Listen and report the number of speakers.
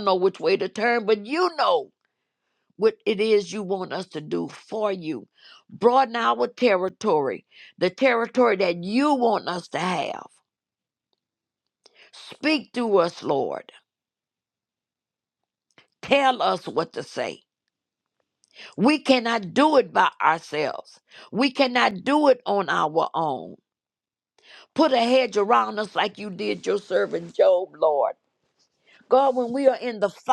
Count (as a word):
one